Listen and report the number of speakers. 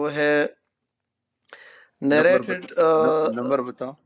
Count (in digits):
2